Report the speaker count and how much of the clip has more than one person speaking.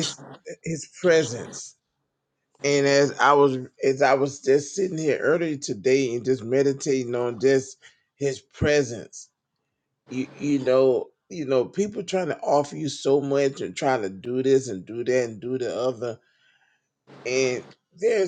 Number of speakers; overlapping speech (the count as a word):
one, no overlap